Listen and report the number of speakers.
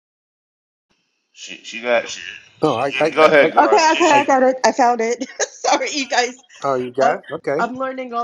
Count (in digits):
3